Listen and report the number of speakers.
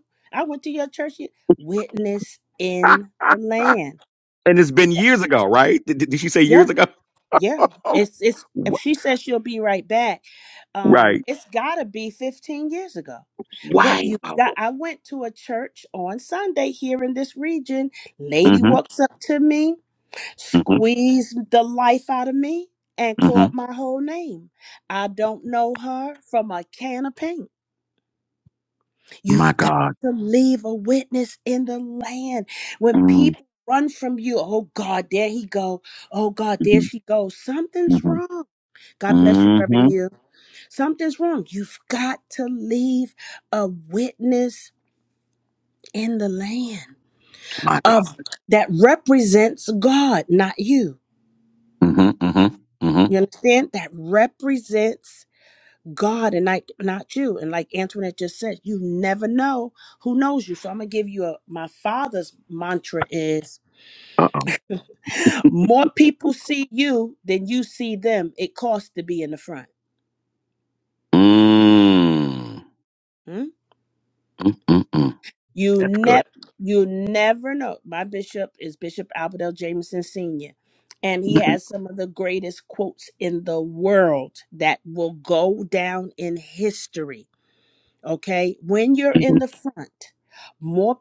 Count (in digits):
2